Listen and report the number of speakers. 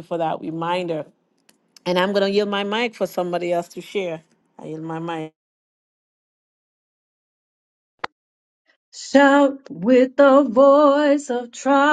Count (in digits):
2